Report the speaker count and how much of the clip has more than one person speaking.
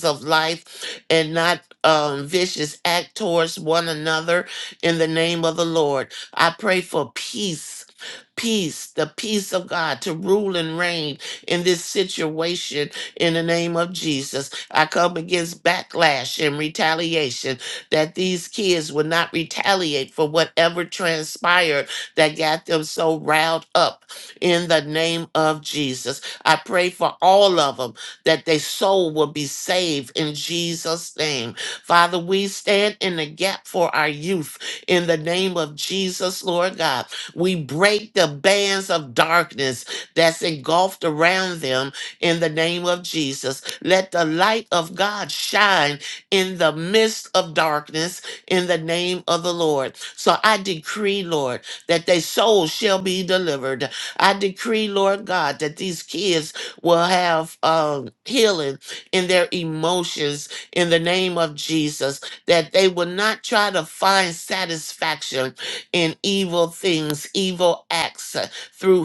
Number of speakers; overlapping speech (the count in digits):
1, no overlap